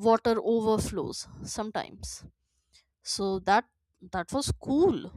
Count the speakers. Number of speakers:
1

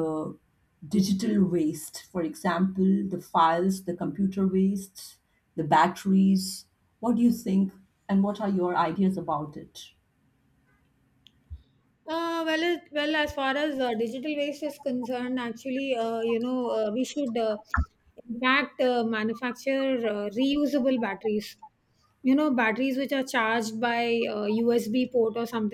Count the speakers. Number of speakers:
2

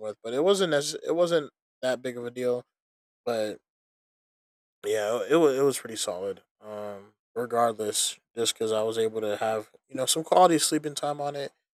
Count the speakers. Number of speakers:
1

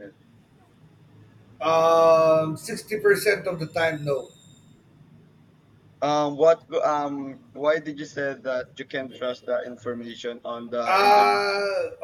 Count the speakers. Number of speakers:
2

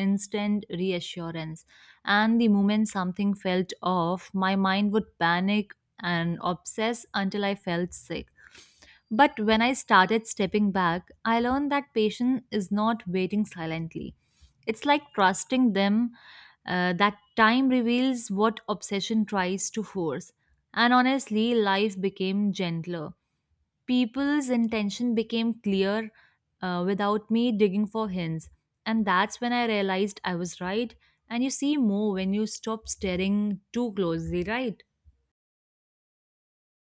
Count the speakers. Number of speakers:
1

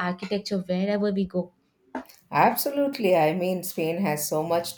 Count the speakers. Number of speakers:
2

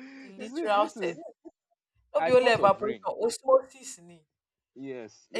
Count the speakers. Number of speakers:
2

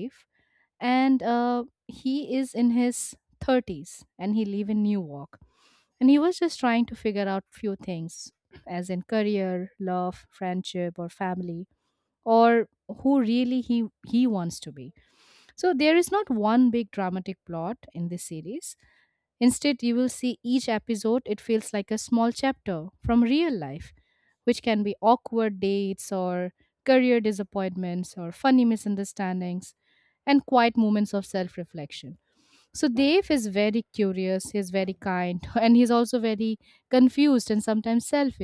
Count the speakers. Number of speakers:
1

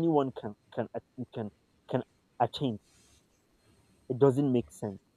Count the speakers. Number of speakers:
1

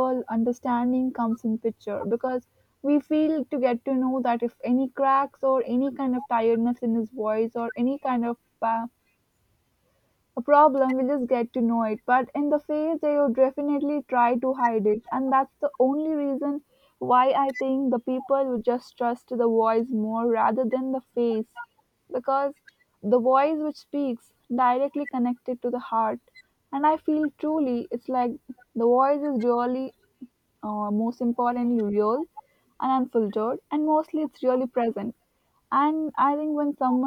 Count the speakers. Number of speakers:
1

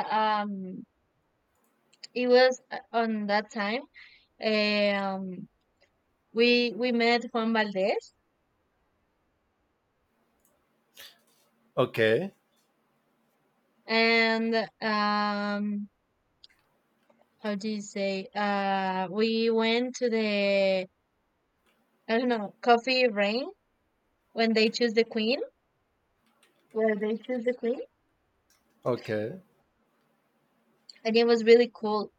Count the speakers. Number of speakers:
2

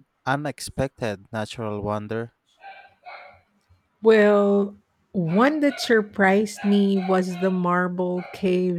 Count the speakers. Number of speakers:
2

